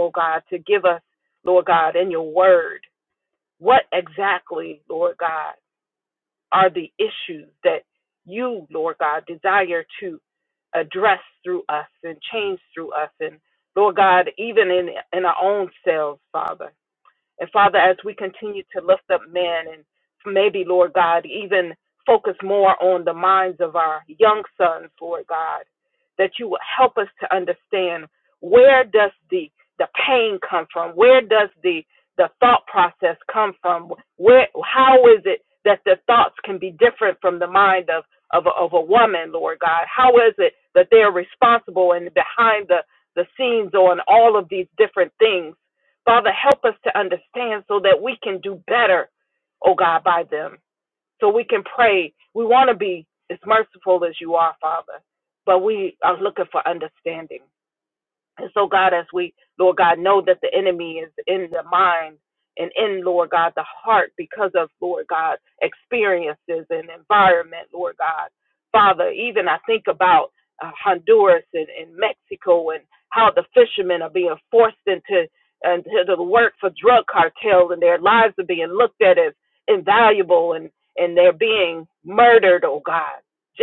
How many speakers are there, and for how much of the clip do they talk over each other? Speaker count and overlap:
1, no overlap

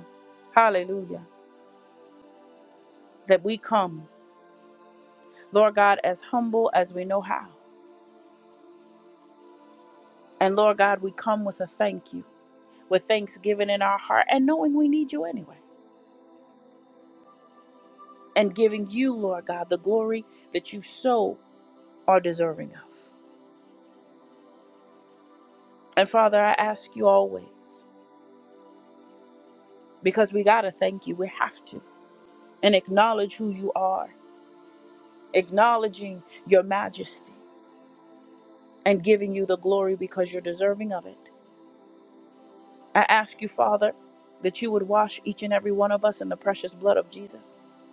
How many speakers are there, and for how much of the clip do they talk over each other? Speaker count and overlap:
1, no overlap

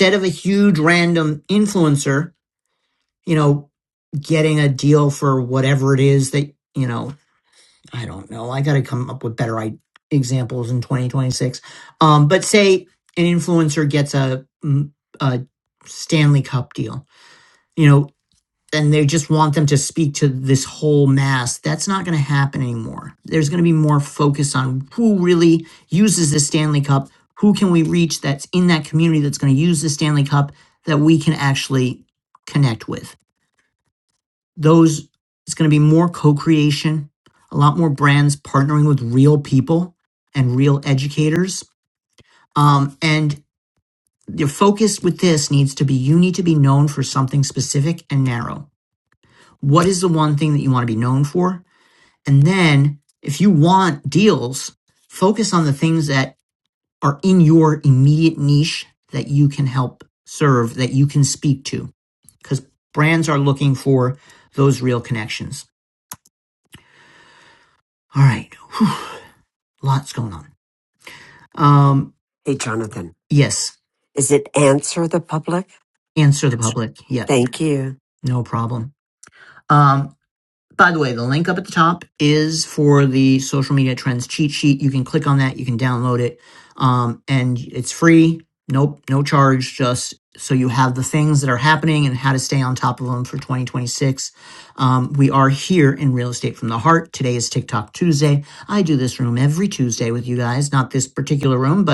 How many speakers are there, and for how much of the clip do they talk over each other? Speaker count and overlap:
2, under 1%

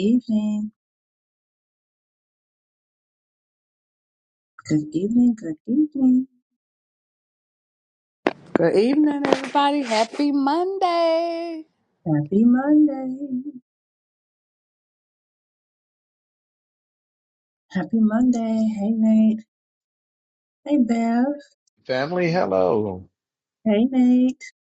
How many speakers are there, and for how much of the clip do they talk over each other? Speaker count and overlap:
3, no overlap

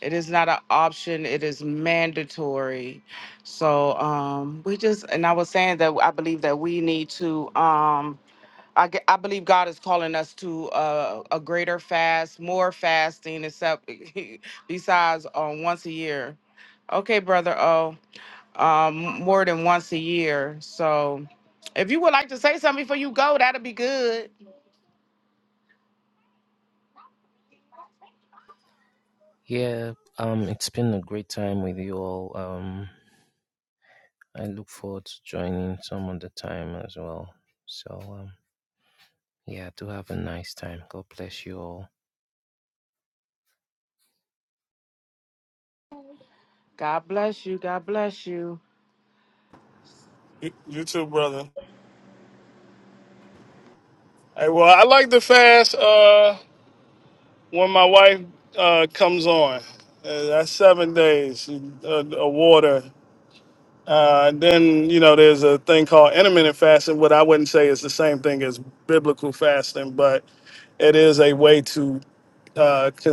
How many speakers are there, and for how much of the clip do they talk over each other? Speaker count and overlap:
3, no overlap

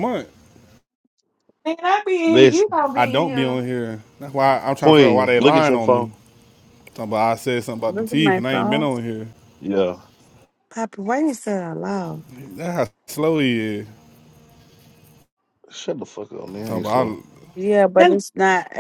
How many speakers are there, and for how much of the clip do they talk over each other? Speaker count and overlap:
4, about 19%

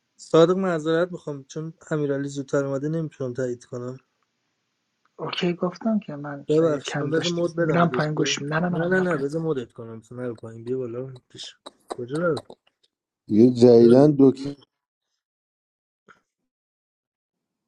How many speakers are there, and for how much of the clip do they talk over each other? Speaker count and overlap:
3, about 13%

